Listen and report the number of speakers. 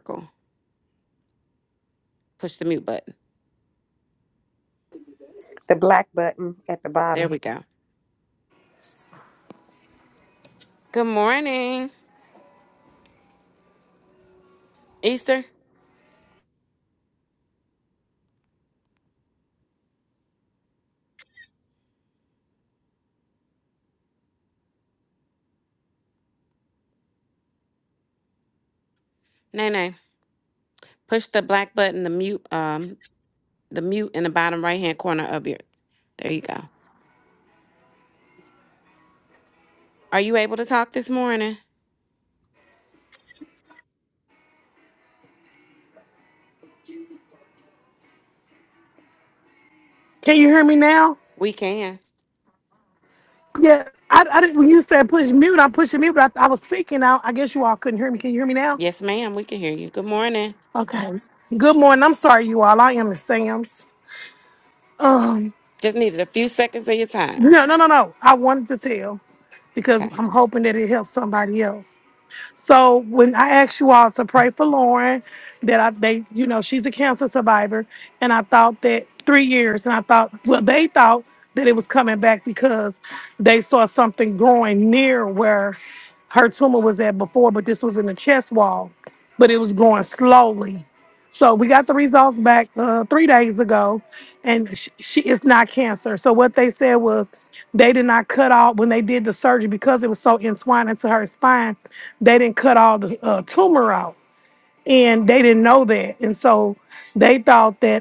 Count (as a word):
three